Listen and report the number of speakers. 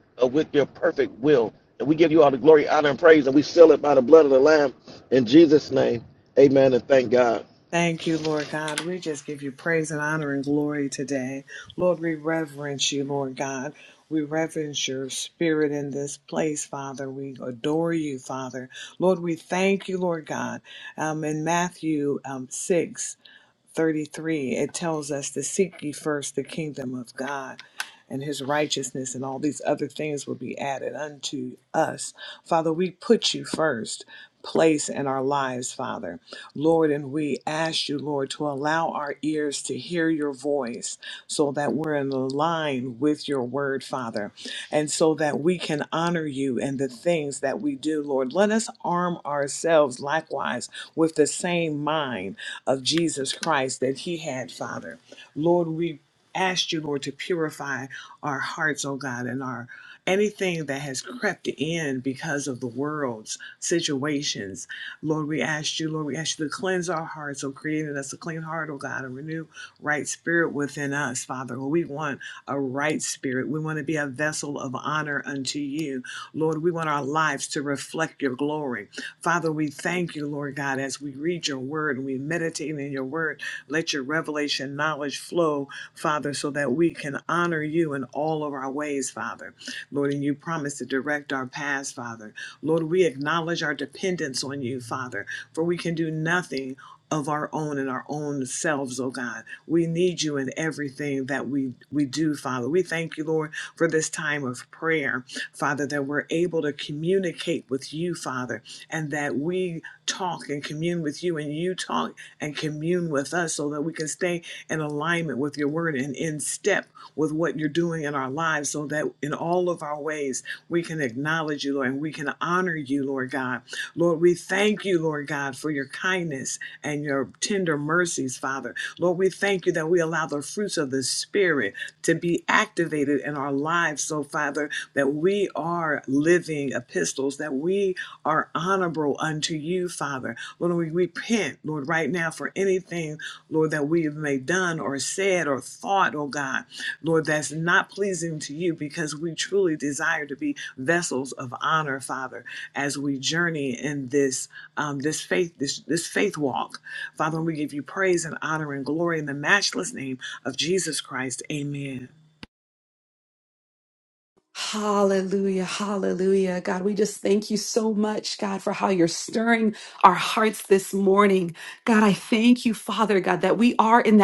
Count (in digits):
3